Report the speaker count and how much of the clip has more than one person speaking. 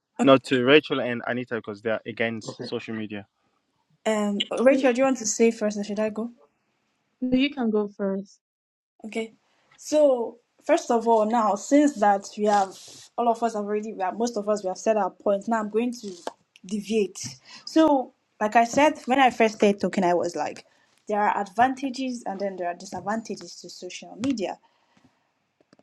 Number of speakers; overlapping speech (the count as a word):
three, about 1%